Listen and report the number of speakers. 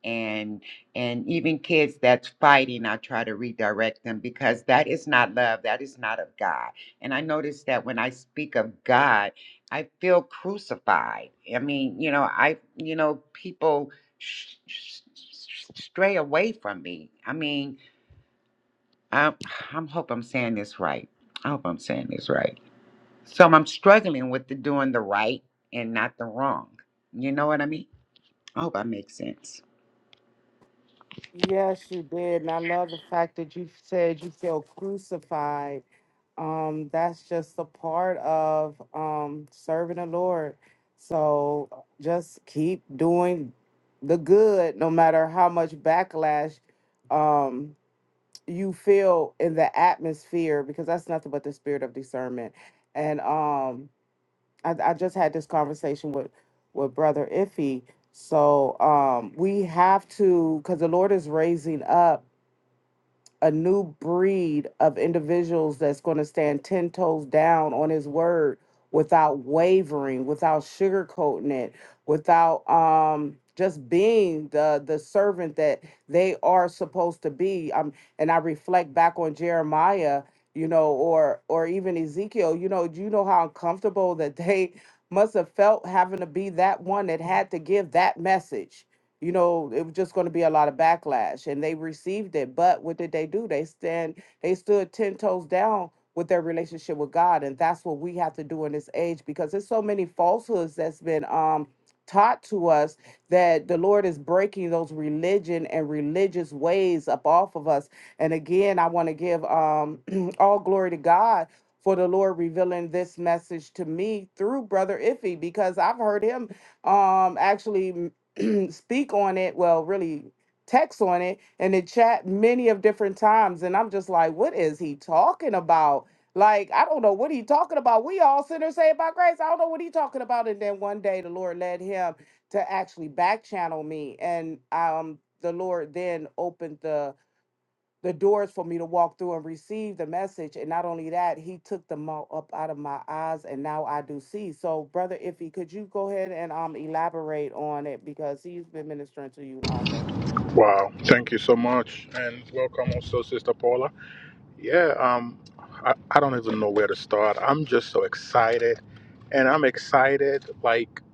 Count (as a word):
three